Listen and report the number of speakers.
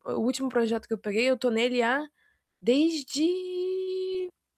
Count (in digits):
1